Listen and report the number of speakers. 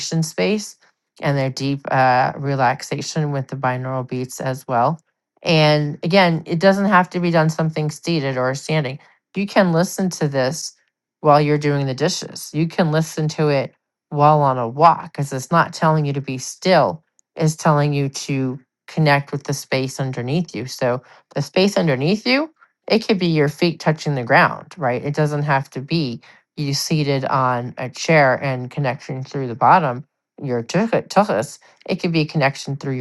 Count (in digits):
1